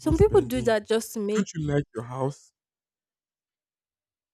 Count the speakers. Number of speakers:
2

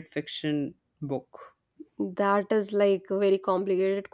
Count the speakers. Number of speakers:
2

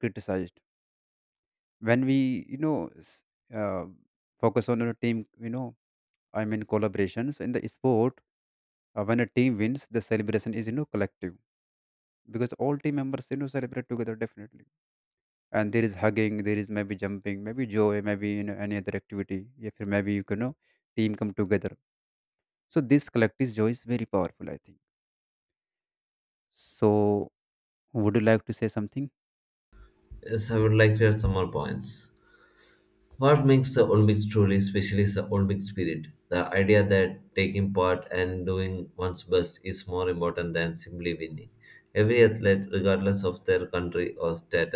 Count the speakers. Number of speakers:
2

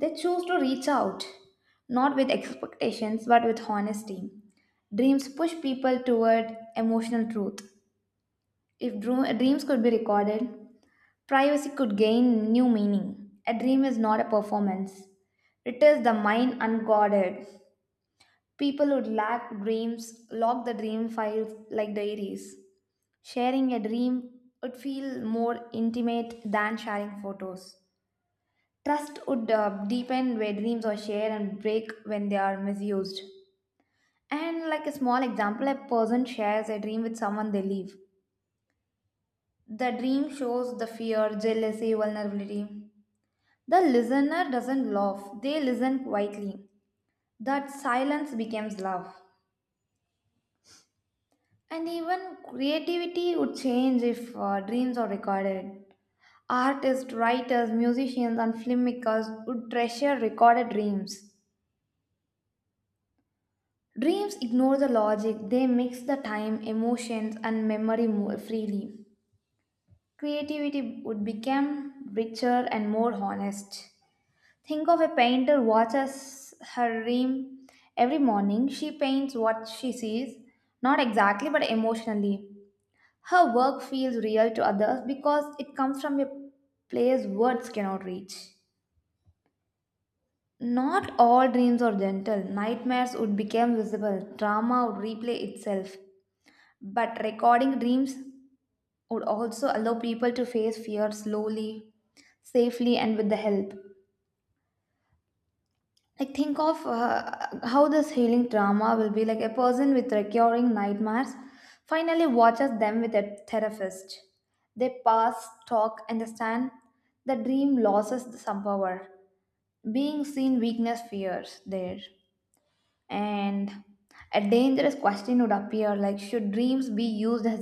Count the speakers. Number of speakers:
1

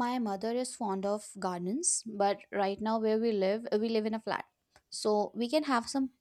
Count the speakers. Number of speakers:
1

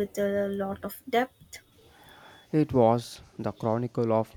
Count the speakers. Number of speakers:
2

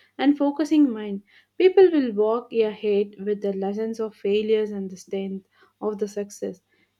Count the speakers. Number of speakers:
1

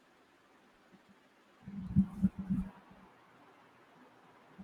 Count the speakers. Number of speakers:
0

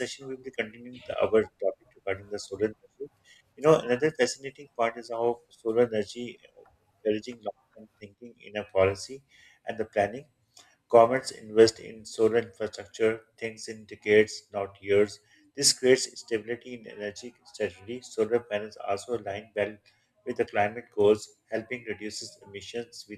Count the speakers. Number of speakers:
1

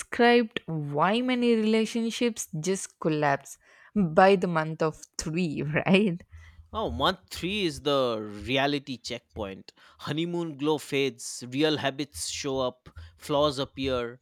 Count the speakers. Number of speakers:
2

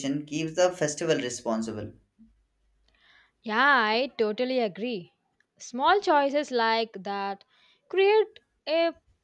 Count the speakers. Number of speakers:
2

